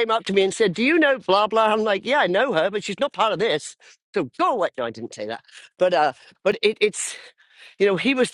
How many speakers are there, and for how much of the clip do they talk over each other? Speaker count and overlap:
one, no overlap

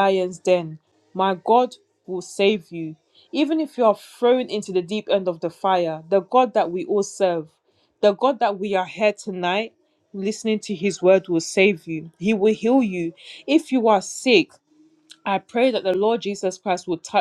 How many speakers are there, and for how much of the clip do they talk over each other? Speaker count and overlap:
one, no overlap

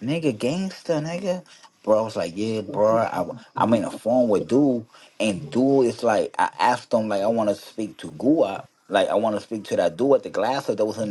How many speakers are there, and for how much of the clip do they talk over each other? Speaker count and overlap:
one, no overlap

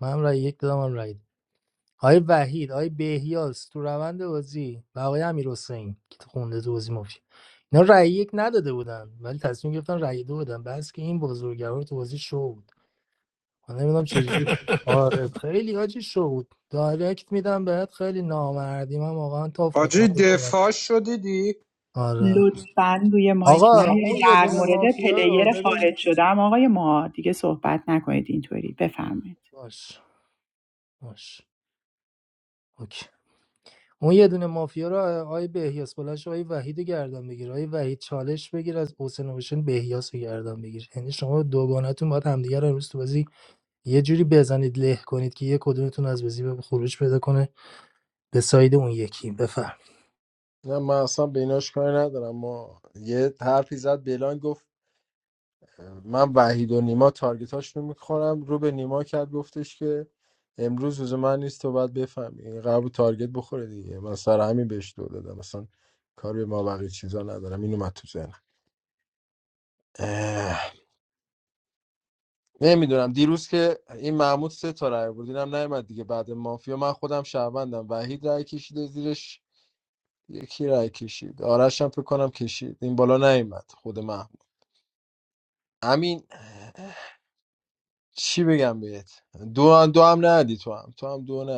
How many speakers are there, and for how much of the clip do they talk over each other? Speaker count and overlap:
four, about 4%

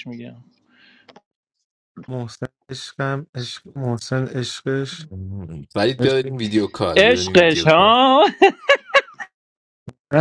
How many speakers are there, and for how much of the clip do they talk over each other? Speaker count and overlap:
three, about 11%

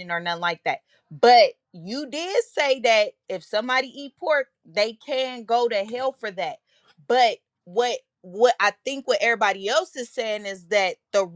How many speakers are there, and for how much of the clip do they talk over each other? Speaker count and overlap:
one, no overlap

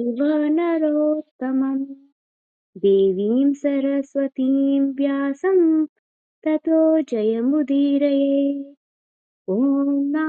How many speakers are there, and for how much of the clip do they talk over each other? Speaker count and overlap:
one, no overlap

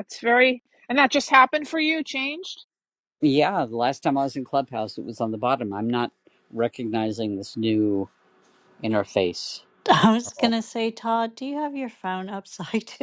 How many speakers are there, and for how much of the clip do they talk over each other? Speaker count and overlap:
three, about 1%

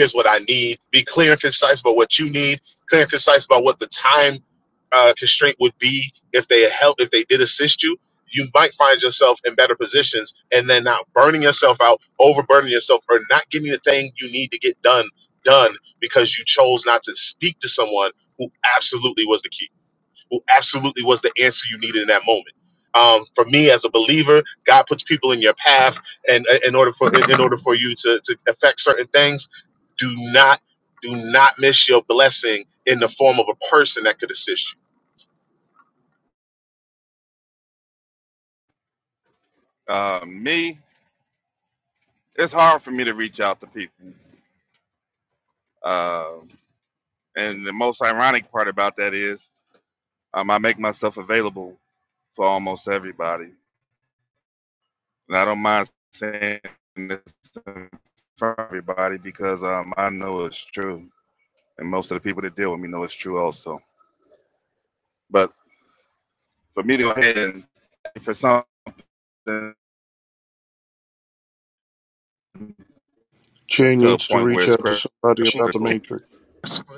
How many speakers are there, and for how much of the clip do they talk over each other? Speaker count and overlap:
three, about 1%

